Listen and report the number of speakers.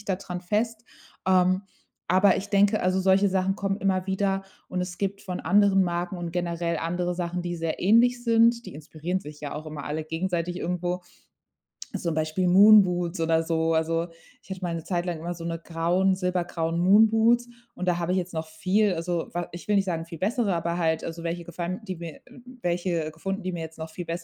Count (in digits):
1